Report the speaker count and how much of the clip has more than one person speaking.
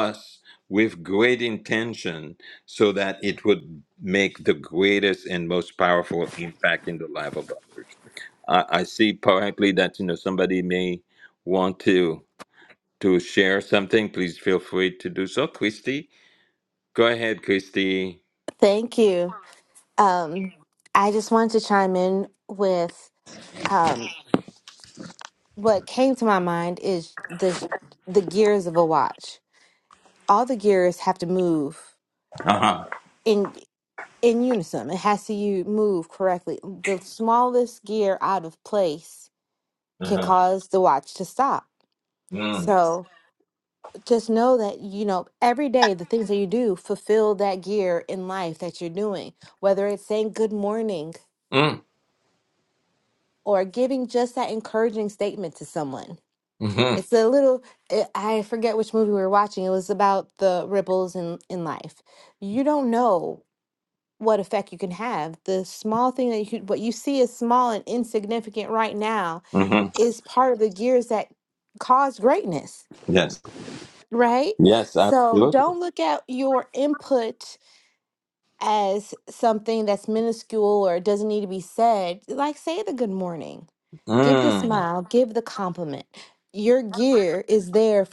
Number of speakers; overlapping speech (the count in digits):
2, about 2%